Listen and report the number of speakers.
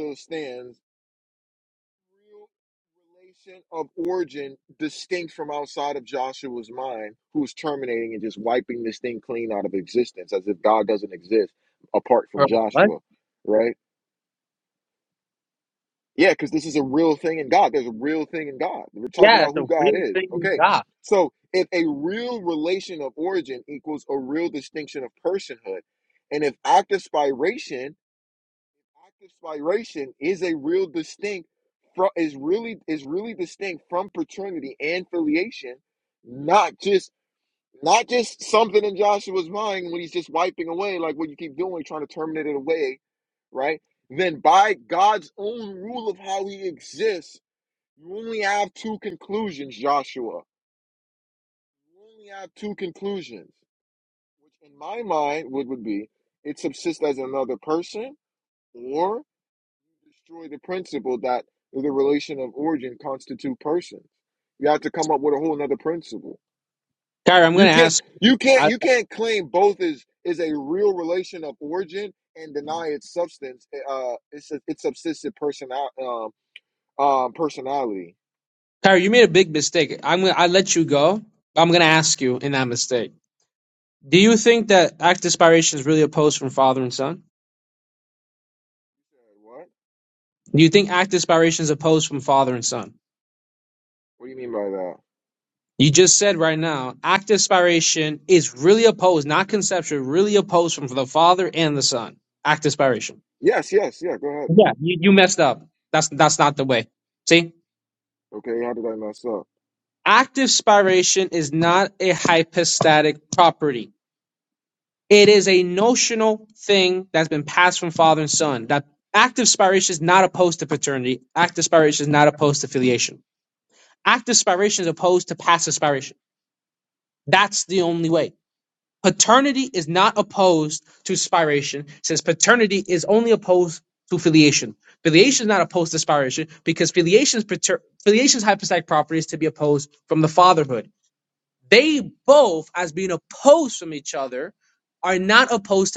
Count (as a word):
two